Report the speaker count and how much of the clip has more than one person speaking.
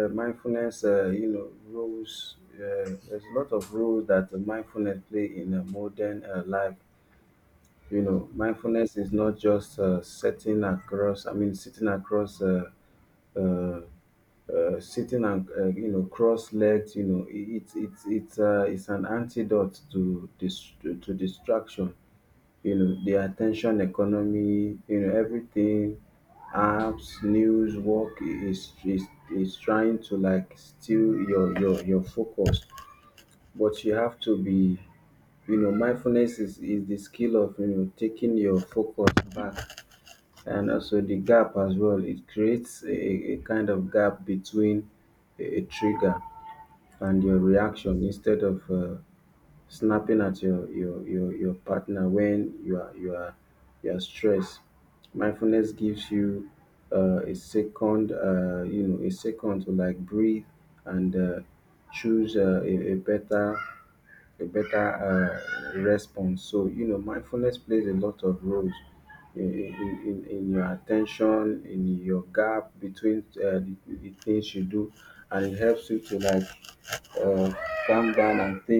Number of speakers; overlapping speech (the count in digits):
1, no overlap